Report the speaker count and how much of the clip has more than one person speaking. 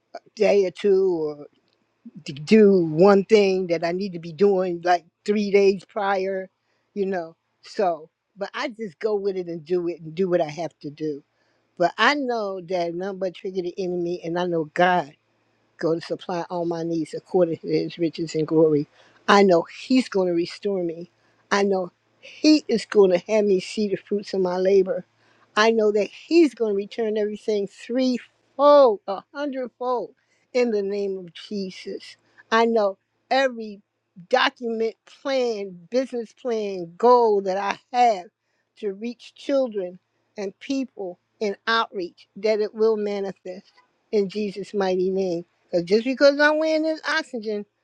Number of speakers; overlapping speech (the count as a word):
one, no overlap